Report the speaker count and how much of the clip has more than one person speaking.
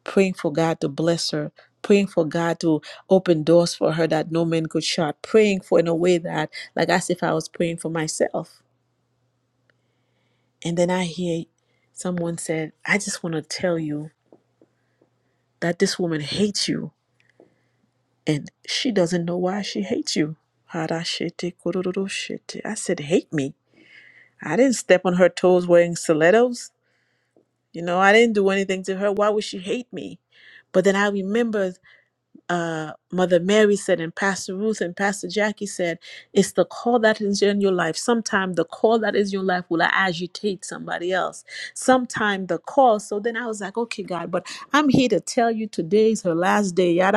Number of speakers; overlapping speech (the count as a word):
one, no overlap